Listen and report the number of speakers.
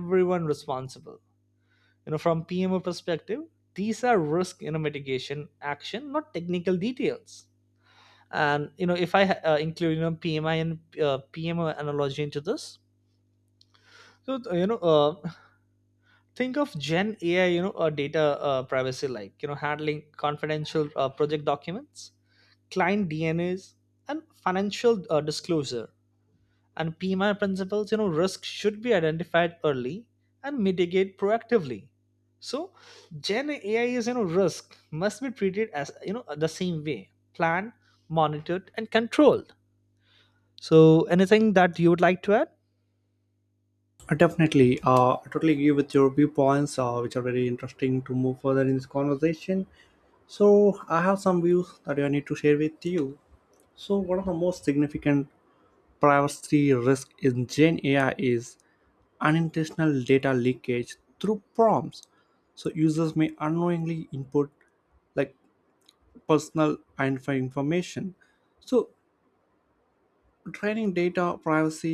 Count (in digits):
2